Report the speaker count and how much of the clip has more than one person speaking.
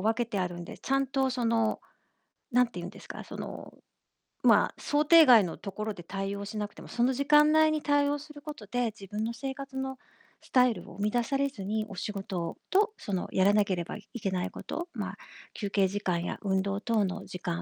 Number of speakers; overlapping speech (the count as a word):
one, no overlap